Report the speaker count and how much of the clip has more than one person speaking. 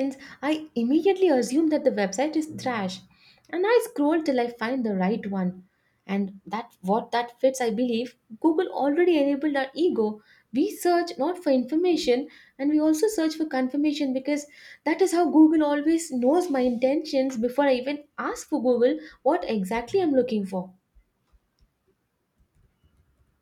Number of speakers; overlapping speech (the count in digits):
1, no overlap